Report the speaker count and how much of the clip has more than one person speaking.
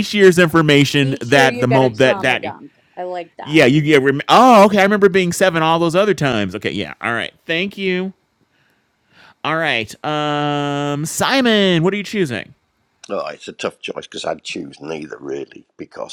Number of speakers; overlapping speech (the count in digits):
3, about 10%